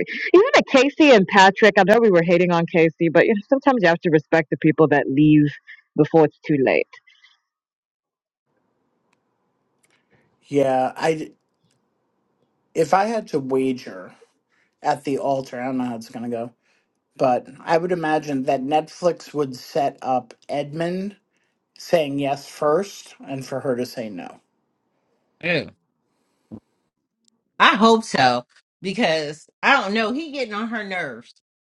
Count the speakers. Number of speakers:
3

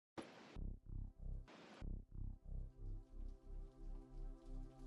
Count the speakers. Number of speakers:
0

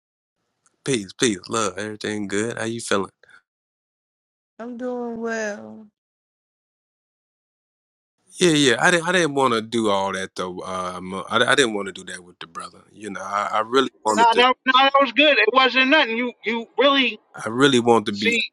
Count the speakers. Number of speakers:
3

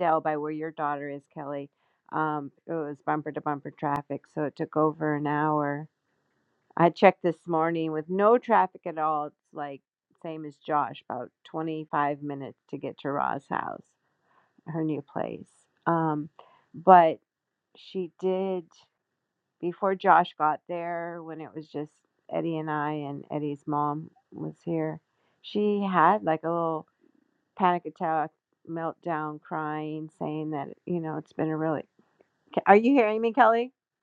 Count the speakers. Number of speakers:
1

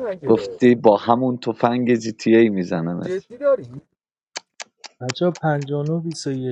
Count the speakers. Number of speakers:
3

